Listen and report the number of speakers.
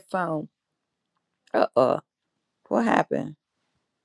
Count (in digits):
1